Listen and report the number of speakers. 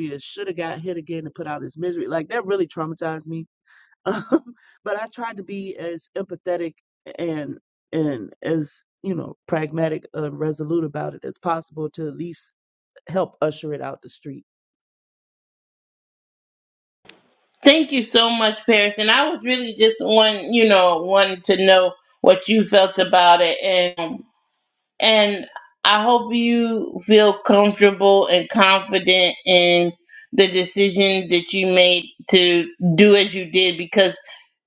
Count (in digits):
2